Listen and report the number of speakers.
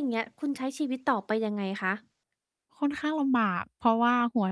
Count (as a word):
two